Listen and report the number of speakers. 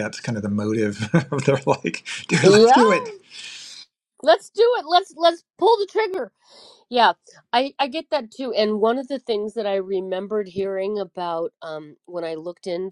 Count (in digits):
2